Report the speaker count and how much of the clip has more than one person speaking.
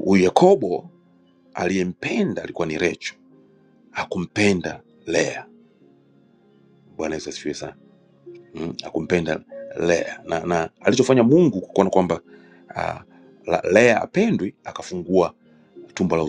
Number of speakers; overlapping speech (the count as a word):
one, no overlap